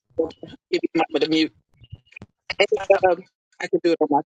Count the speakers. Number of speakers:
one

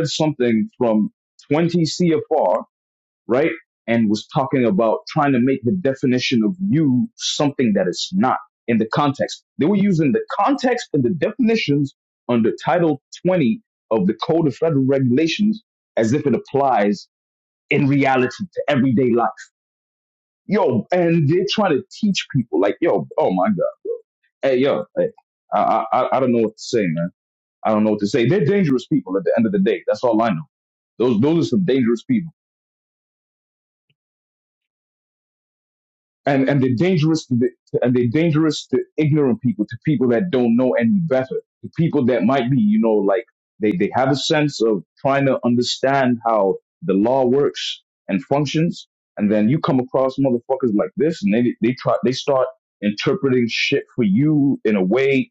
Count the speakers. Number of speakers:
one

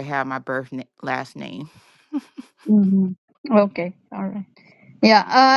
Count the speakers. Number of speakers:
two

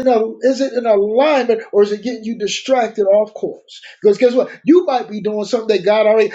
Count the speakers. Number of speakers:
one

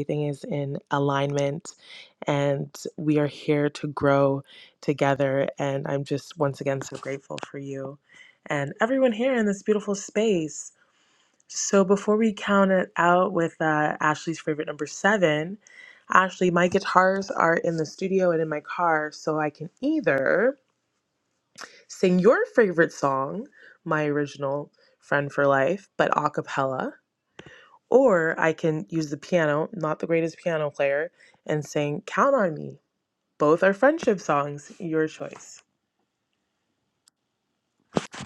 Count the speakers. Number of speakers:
one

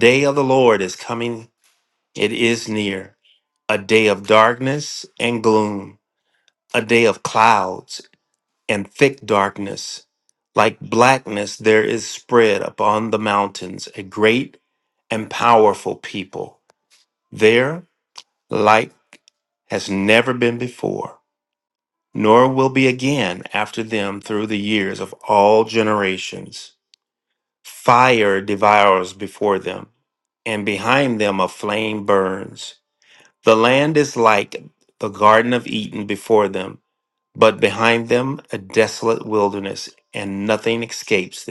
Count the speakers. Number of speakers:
one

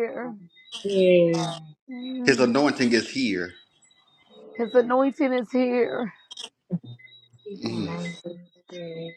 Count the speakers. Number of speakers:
three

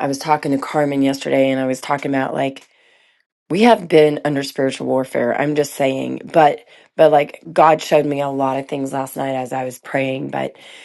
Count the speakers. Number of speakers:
one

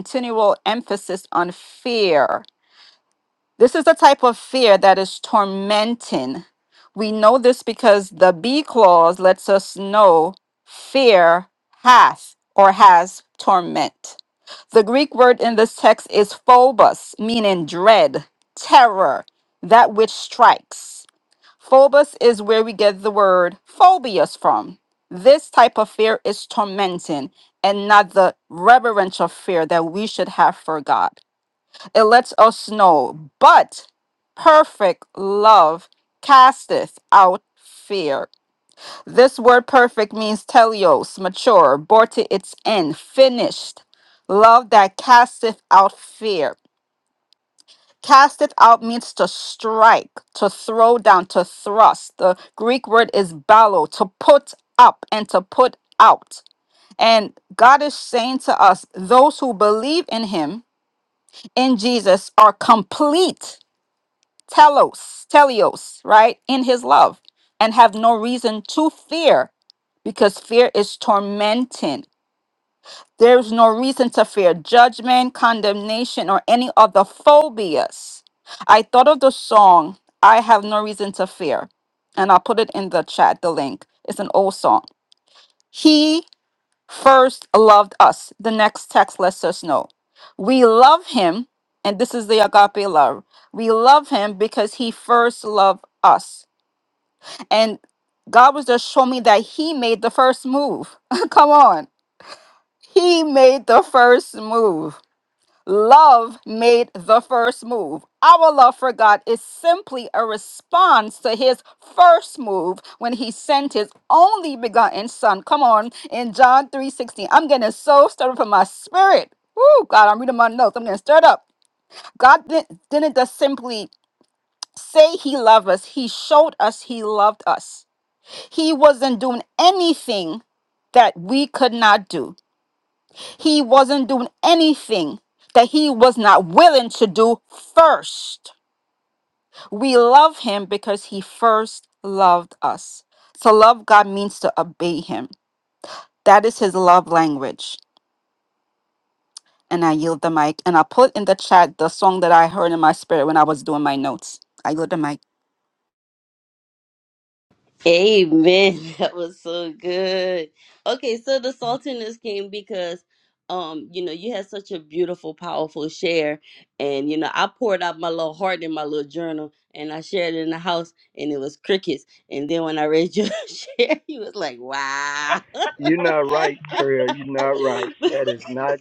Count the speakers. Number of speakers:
three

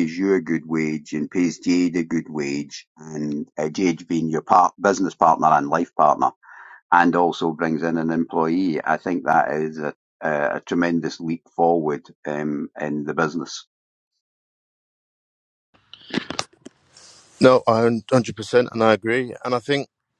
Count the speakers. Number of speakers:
two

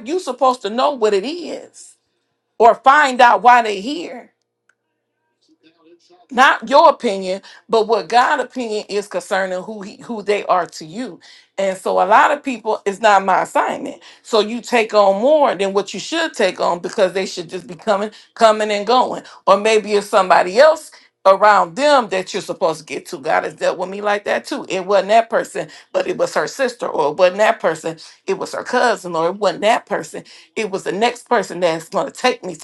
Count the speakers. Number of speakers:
one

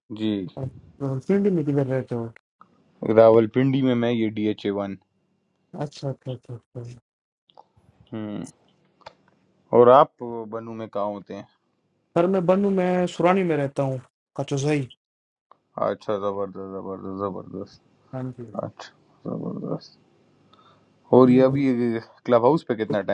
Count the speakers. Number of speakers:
two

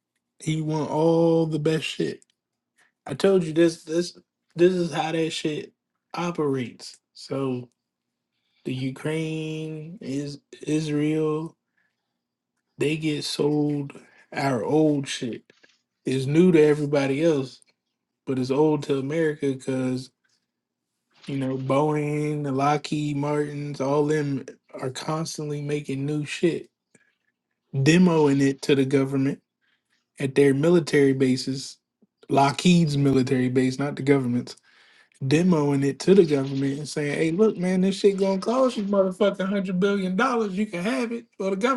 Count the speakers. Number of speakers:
one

